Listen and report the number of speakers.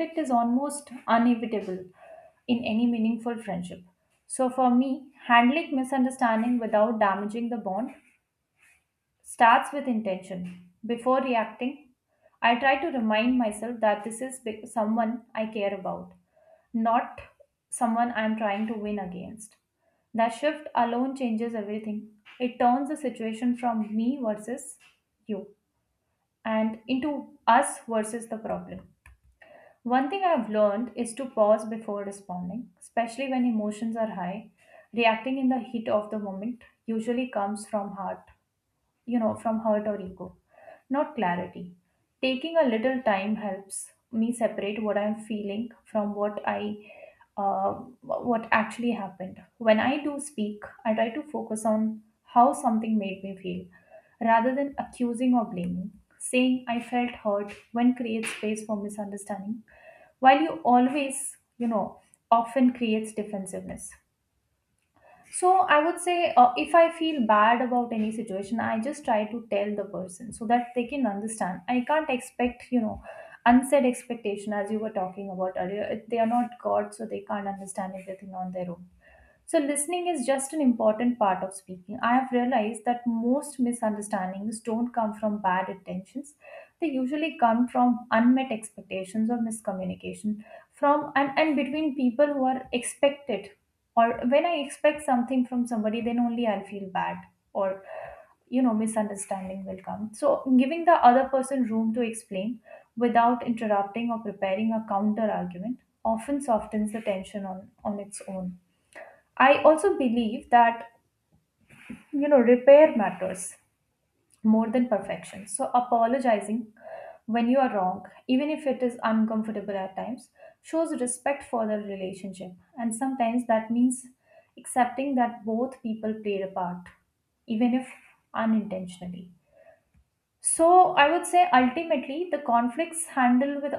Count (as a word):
one